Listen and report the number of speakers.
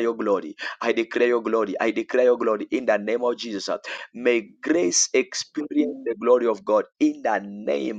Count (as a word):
one